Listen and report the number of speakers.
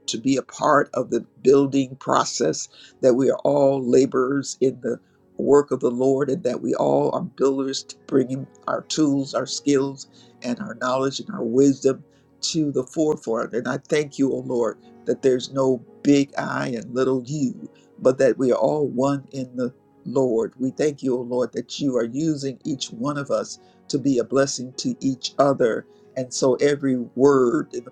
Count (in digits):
1